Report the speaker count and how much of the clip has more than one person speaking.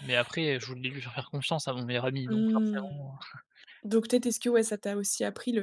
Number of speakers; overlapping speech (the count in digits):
2, about 11%